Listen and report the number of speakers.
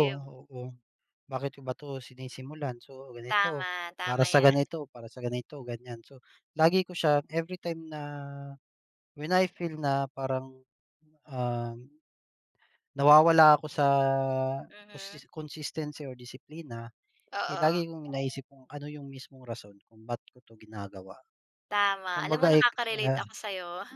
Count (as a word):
two